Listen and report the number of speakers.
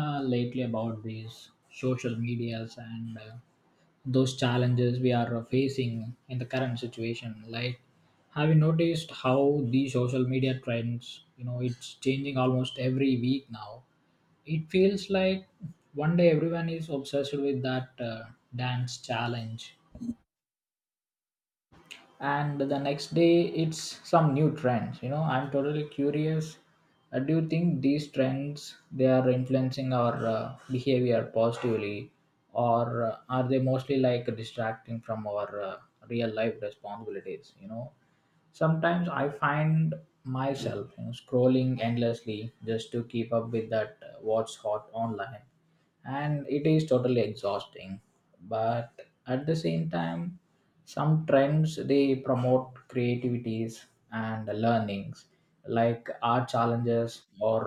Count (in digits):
1